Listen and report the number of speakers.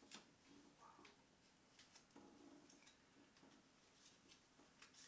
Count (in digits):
0